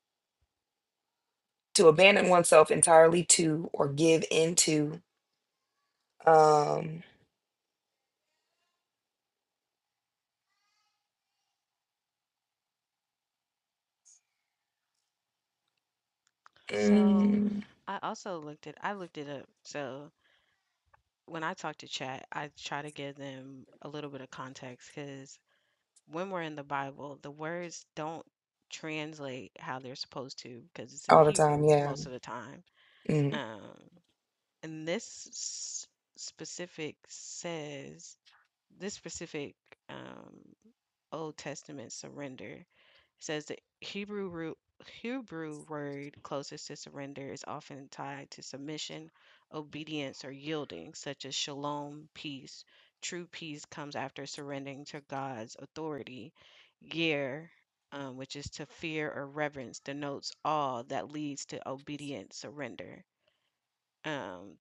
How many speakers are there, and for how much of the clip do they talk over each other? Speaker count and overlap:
two, about 3%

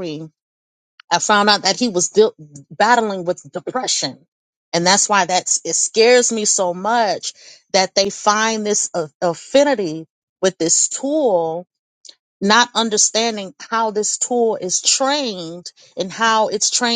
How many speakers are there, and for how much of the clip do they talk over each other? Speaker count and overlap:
one, no overlap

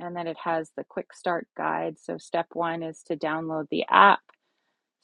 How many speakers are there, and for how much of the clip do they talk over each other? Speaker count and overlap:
one, no overlap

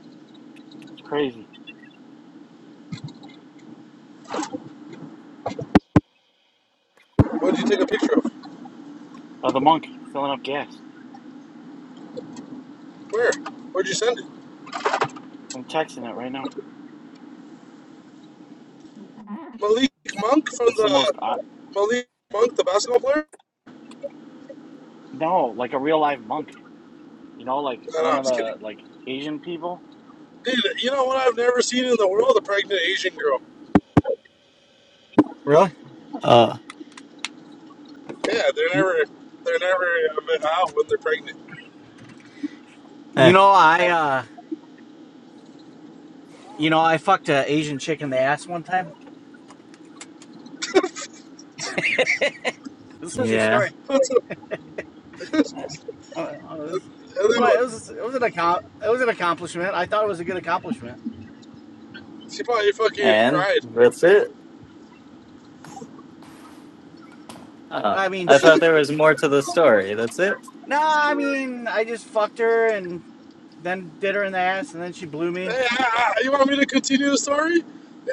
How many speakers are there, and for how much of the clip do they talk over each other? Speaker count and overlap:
three, about 5%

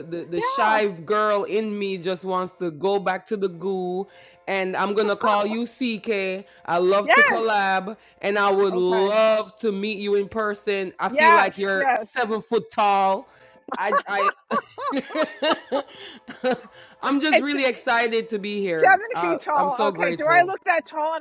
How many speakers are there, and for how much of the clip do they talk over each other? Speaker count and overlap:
two, about 21%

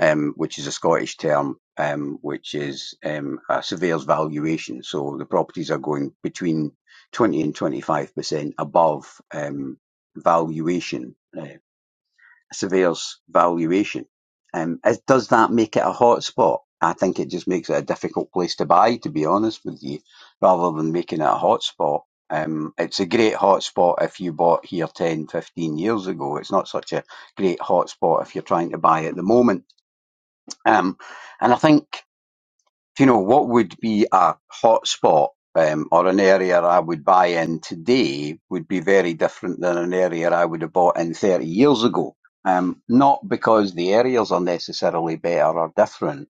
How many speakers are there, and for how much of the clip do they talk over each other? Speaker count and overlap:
one, no overlap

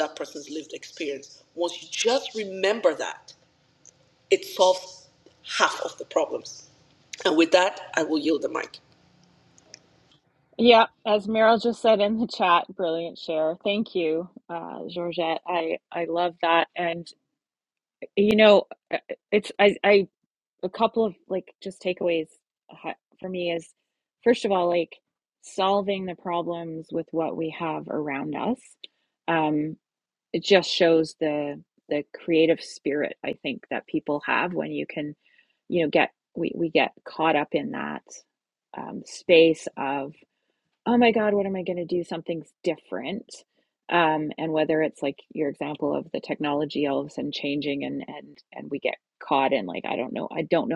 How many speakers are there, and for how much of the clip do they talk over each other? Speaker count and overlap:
two, no overlap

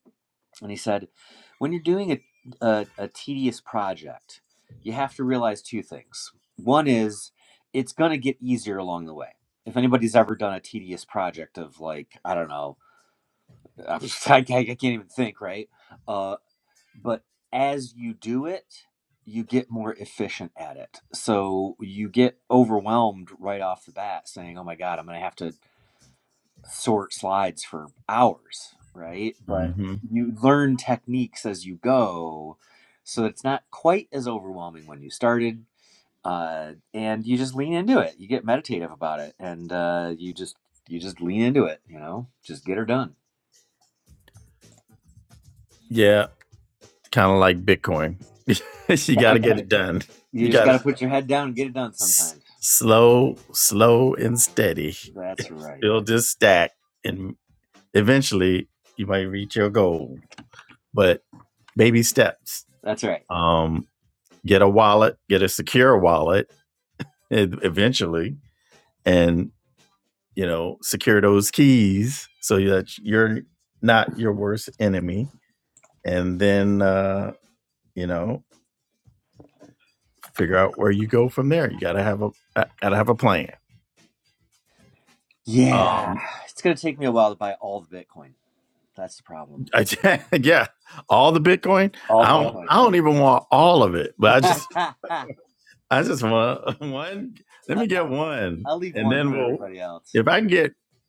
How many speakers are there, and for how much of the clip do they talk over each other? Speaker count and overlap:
two, about 3%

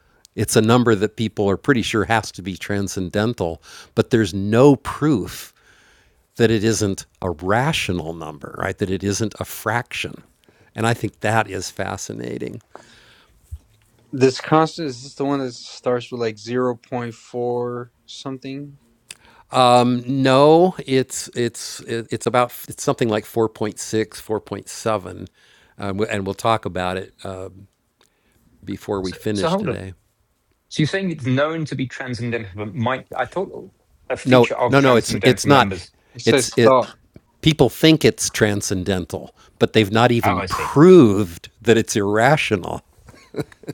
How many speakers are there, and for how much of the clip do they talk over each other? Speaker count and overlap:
three, about 7%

